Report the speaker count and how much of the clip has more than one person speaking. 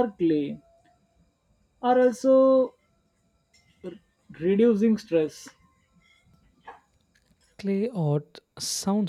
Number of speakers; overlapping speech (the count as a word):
two, no overlap